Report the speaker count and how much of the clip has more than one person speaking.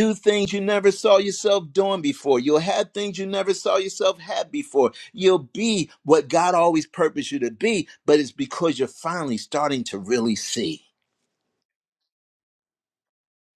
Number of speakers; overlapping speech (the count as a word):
one, no overlap